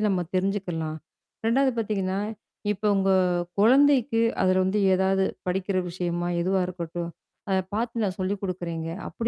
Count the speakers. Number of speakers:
one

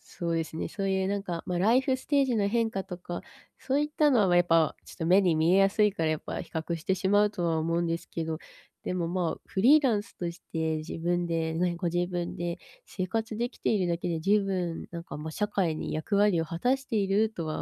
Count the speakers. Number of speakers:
one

